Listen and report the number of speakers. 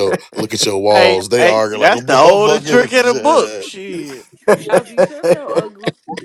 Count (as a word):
three